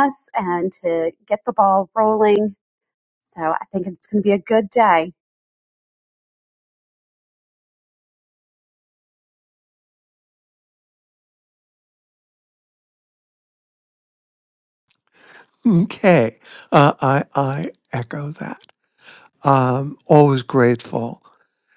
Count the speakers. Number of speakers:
2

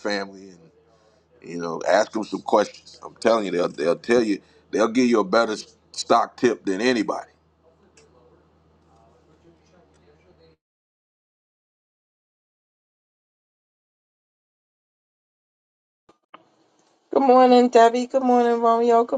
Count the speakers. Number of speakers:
2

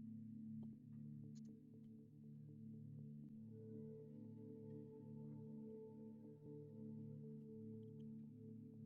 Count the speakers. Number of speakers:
0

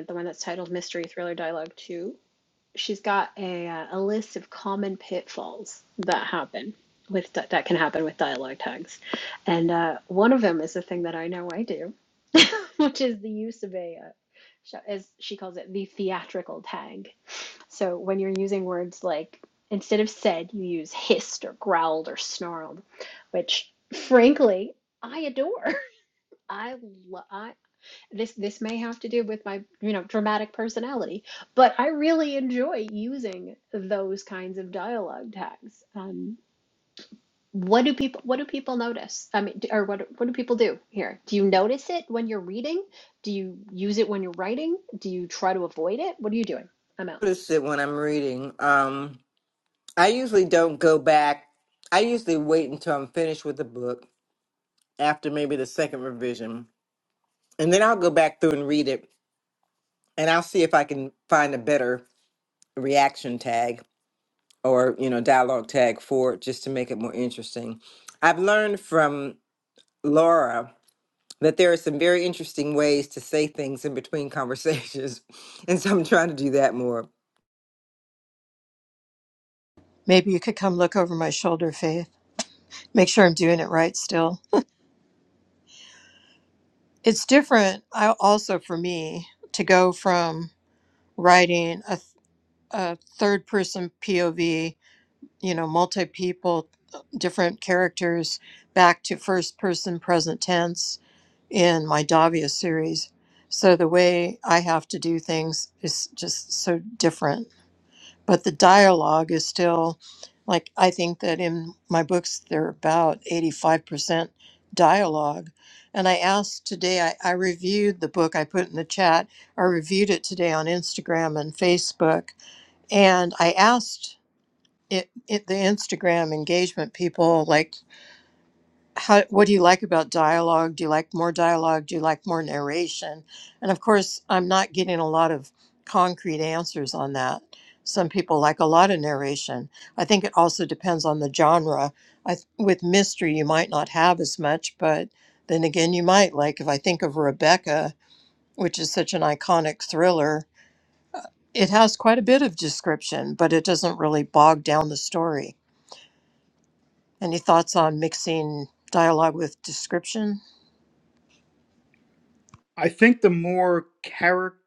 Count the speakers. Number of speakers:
4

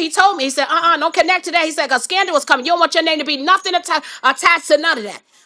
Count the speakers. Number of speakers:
1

